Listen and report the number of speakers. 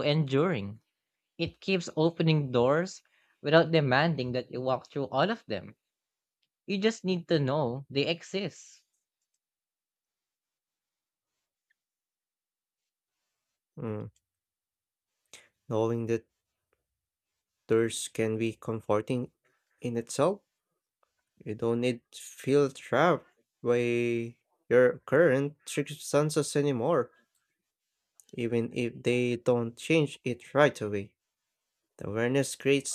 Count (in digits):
2